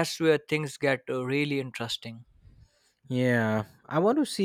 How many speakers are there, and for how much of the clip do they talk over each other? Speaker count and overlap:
two, no overlap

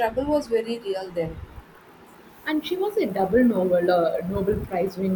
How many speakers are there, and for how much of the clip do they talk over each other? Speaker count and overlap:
two, no overlap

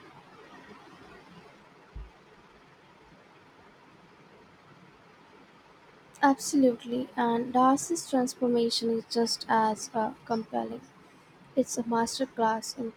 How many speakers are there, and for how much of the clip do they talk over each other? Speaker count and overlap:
one, no overlap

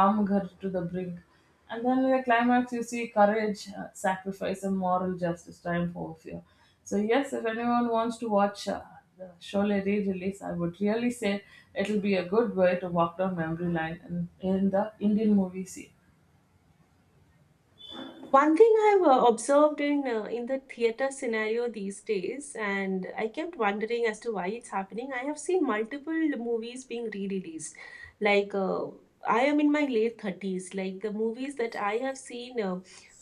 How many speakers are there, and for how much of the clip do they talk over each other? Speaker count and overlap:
two, no overlap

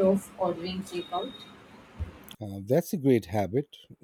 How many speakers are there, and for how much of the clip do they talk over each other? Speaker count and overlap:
two, no overlap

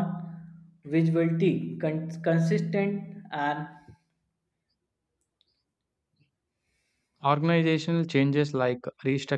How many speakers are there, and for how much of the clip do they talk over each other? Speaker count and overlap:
two, no overlap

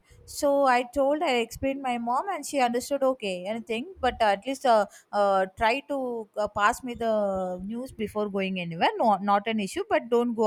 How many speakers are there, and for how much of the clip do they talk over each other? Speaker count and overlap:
one, no overlap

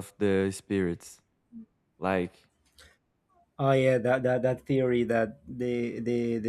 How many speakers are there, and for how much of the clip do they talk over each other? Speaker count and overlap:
two, no overlap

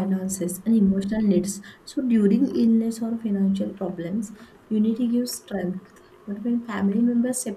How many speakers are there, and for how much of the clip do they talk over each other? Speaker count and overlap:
one, no overlap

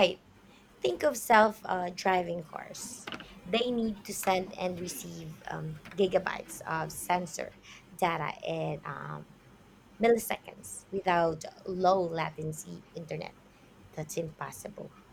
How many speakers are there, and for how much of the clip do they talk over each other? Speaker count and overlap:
one, no overlap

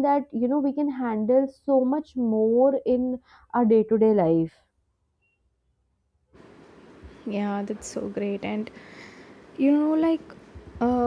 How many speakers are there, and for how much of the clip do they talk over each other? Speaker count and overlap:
two, no overlap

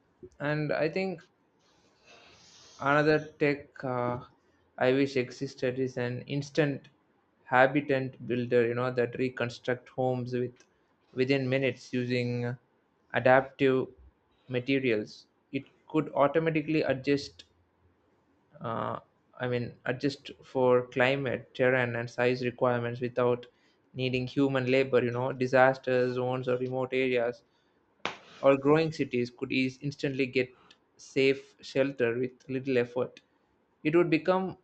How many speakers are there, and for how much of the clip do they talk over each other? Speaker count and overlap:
one, no overlap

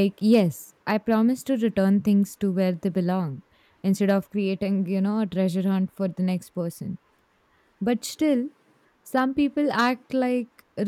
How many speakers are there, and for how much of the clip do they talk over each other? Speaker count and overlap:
one, no overlap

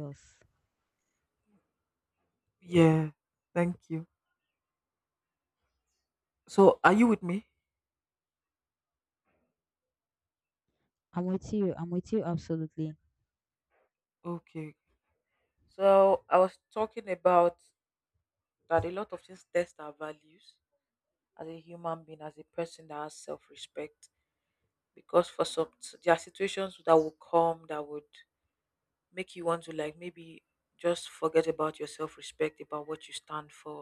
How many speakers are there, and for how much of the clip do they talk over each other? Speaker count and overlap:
two, no overlap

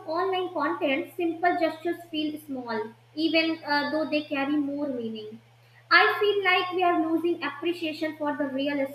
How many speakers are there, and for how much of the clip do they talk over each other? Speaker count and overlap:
one, no overlap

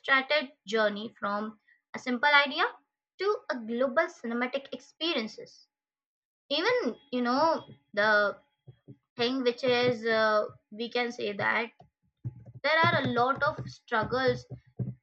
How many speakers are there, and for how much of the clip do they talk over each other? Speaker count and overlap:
one, no overlap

